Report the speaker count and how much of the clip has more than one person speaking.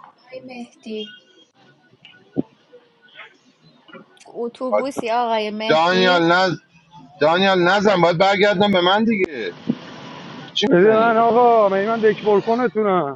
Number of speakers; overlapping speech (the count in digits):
3, about 8%